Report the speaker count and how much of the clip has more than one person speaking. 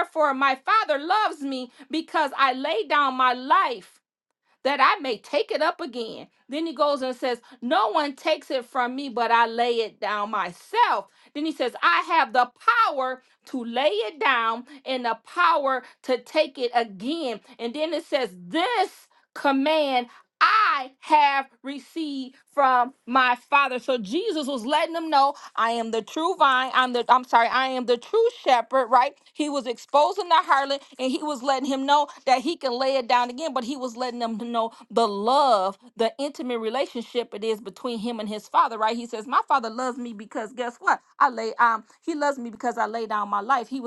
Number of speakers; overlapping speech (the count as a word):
one, no overlap